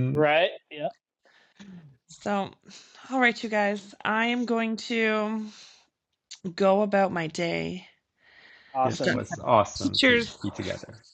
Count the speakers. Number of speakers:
3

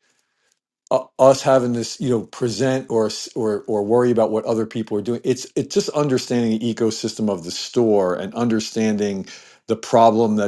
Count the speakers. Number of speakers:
1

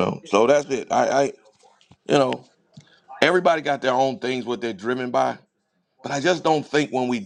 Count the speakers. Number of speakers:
1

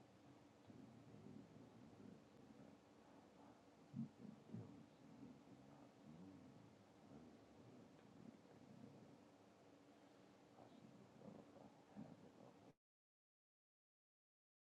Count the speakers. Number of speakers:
0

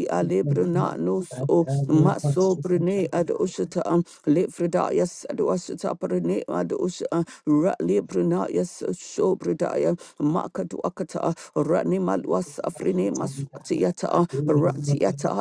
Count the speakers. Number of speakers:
2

